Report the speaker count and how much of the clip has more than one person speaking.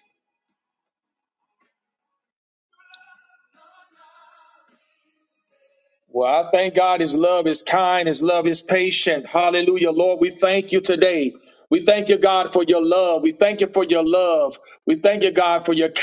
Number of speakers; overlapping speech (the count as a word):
one, no overlap